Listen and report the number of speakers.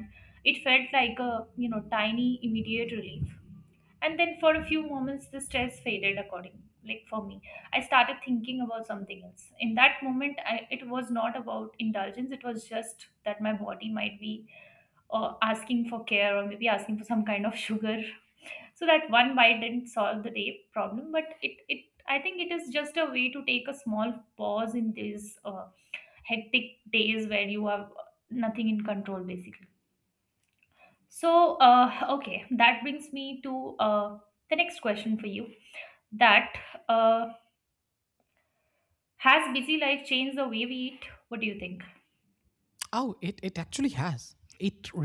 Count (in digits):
2